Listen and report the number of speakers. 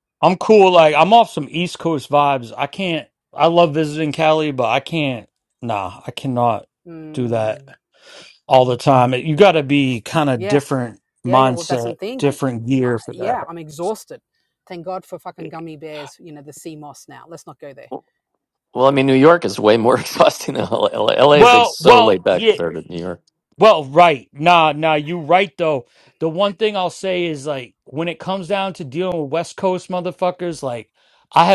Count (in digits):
3